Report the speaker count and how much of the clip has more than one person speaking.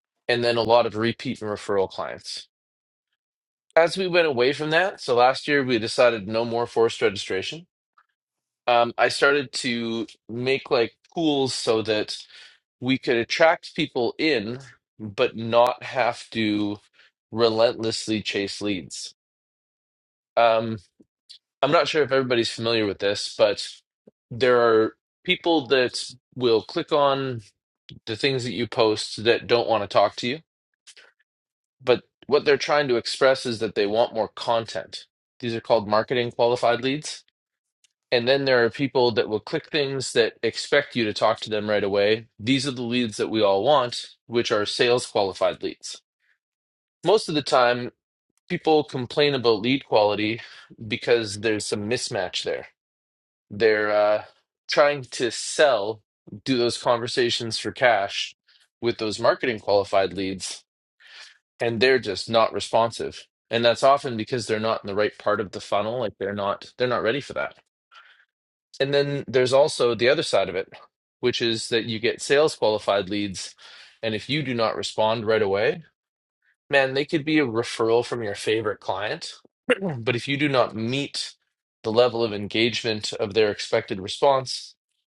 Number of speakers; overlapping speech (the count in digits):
1, no overlap